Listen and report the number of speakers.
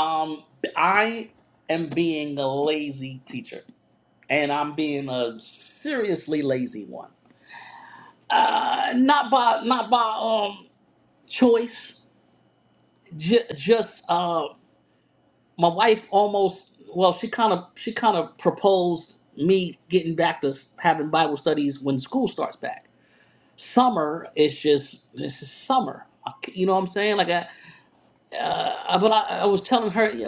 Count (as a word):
one